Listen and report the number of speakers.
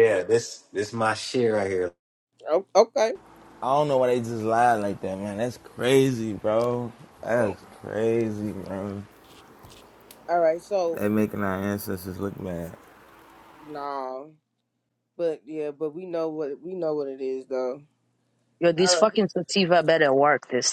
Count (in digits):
4